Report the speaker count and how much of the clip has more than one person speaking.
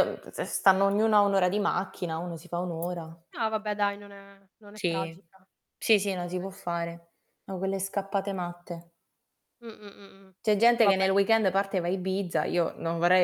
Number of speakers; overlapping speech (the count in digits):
2, about 5%